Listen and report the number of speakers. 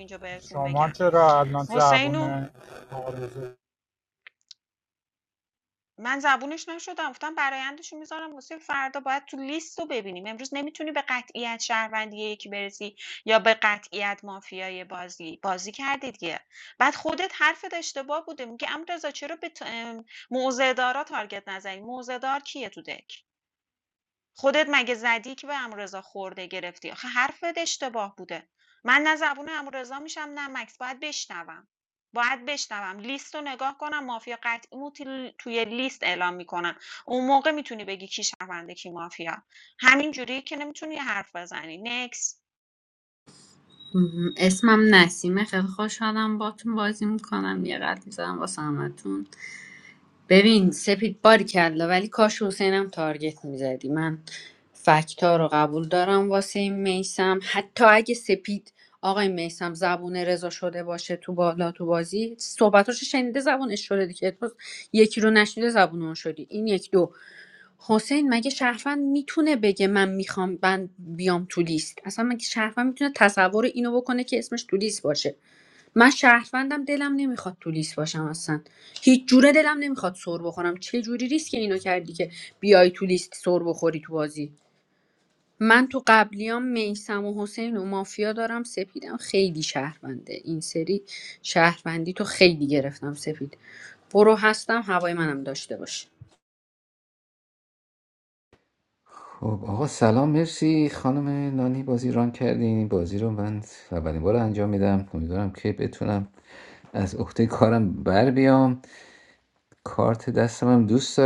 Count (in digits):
4